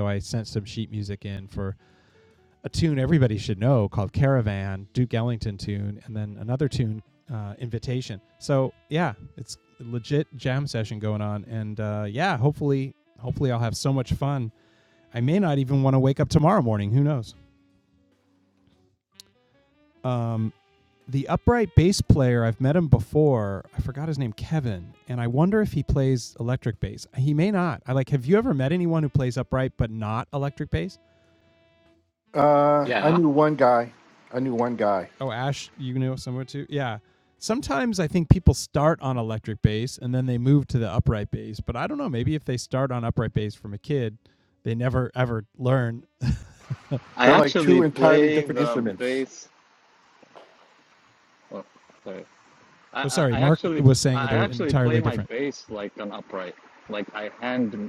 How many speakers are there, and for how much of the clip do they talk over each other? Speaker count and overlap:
3, about 7%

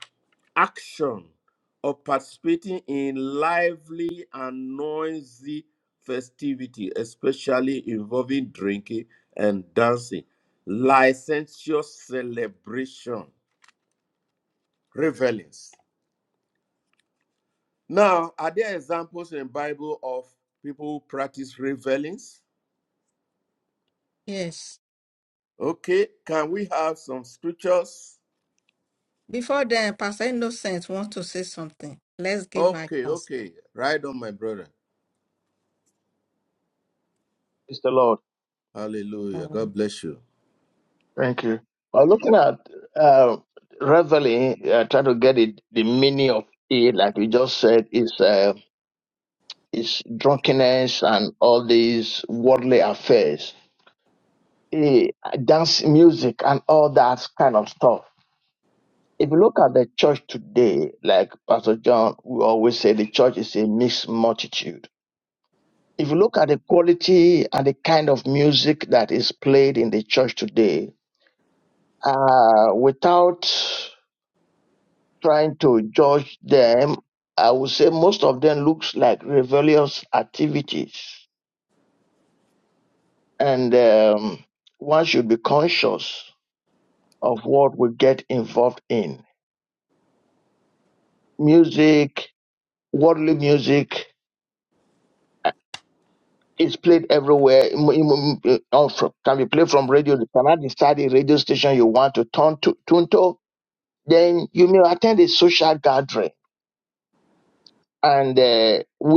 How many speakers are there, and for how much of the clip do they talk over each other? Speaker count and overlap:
3, about 1%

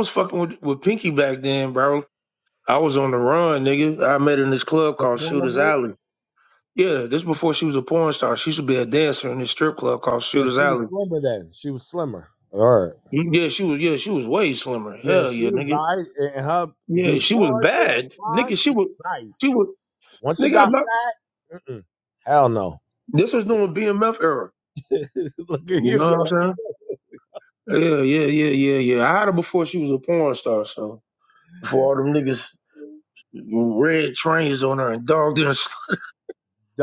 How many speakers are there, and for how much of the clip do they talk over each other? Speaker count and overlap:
2, about 13%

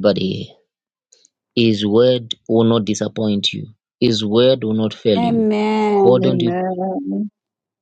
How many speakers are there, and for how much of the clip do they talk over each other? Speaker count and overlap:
3, about 10%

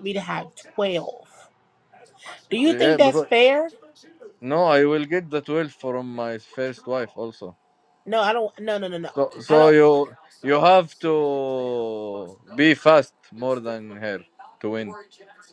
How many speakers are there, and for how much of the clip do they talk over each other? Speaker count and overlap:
2, about 6%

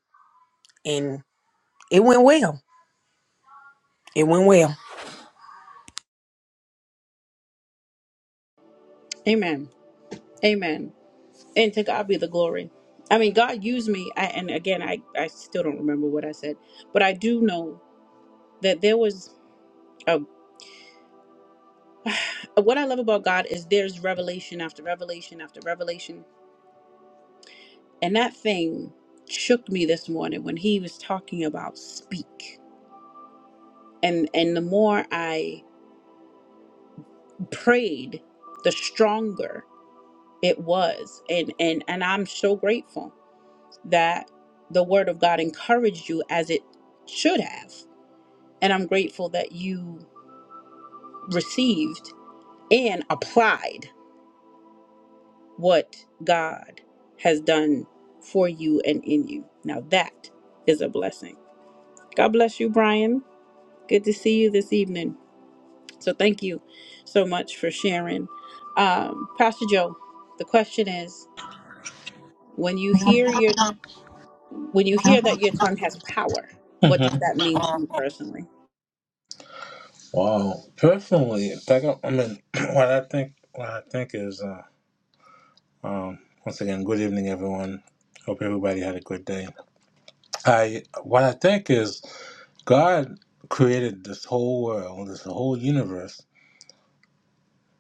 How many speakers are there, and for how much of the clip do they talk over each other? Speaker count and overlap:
3, under 1%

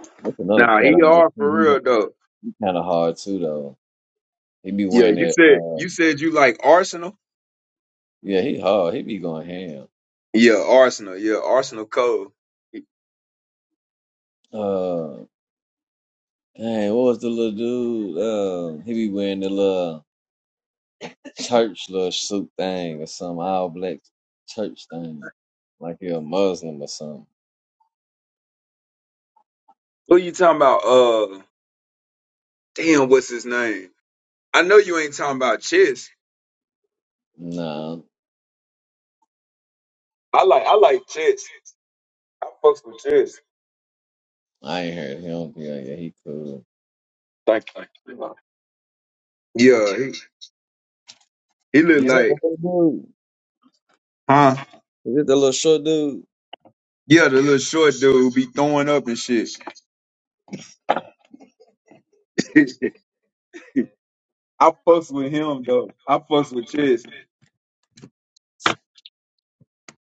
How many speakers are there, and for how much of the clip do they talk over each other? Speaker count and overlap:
2, about 4%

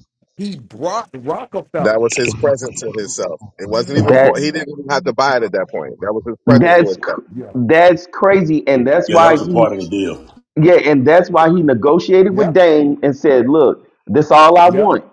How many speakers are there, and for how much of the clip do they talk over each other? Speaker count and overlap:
4, about 16%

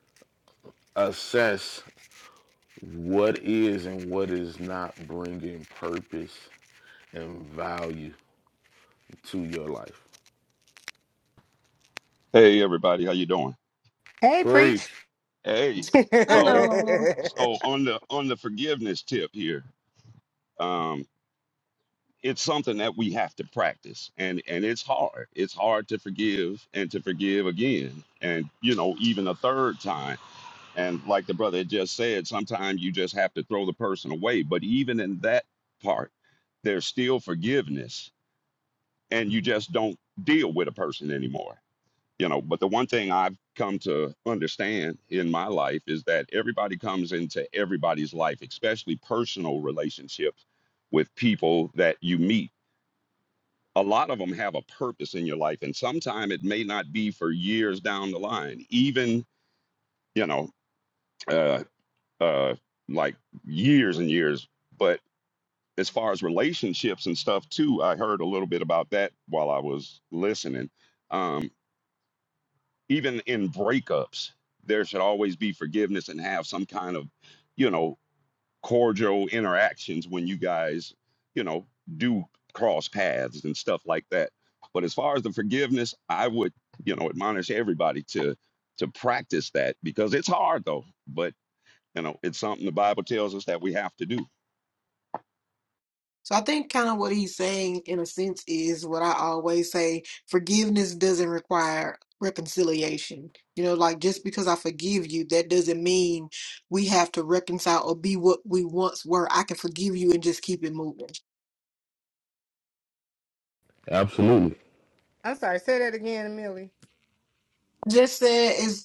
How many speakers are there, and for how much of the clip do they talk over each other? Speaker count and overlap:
4, about 1%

